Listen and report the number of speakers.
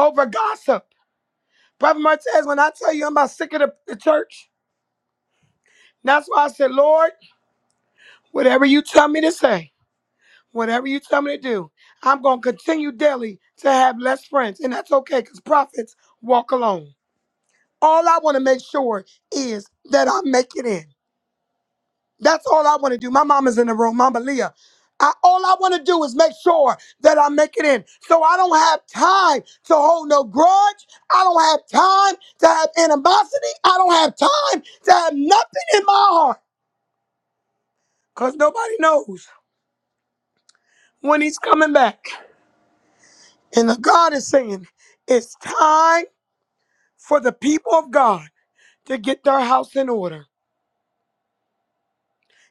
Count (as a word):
one